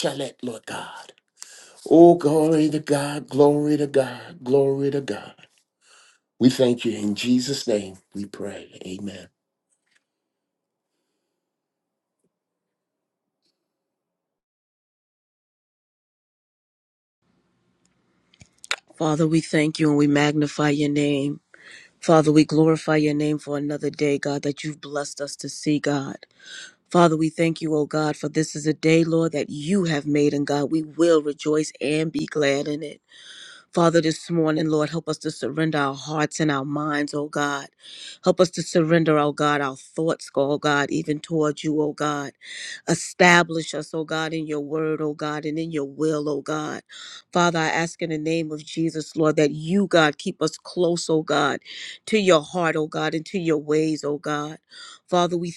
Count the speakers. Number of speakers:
two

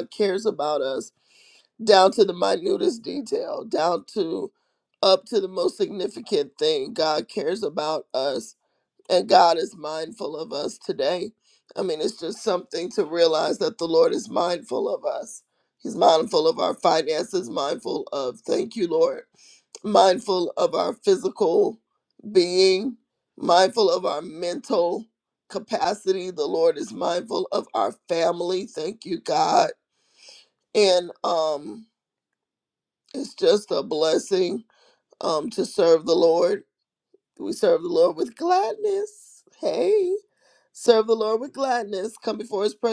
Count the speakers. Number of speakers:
one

